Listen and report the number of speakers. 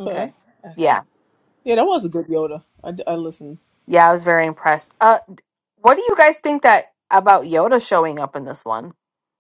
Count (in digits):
2